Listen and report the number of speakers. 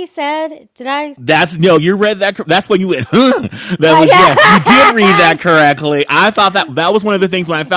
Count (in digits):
2